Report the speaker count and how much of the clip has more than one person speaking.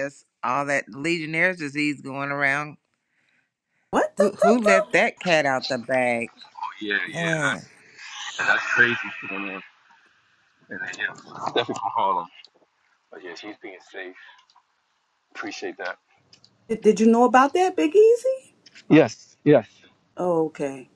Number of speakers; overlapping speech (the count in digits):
3, about 6%